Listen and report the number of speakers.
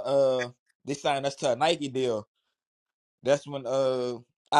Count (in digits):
1